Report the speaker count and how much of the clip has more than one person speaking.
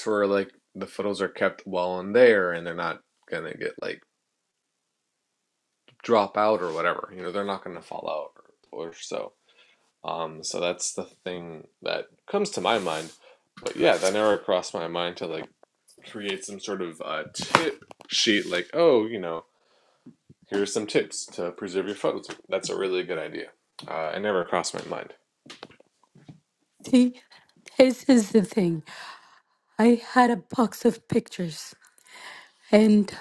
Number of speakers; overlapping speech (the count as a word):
two, no overlap